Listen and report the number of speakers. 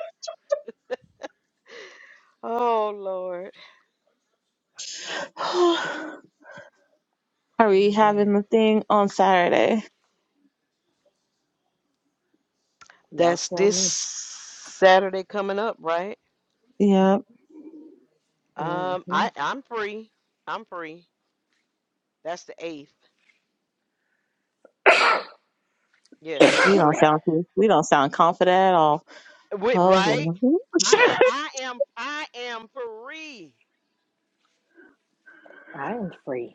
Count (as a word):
three